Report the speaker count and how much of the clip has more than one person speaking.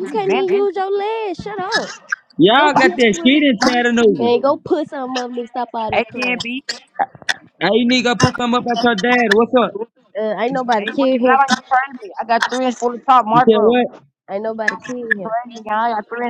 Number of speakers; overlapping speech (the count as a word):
three, about 20%